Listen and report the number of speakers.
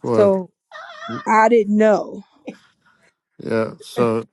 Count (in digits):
2